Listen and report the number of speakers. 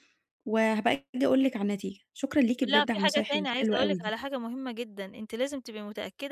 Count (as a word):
two